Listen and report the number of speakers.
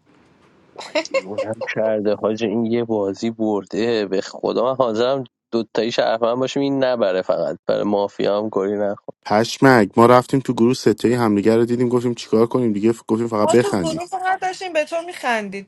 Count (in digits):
3